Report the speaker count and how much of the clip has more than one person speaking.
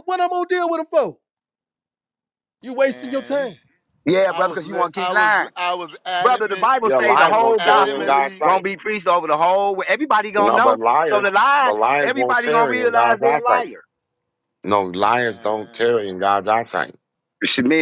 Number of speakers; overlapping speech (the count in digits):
4, about 42%